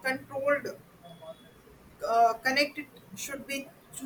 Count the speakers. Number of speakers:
one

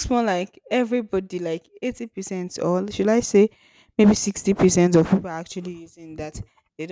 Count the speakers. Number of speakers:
one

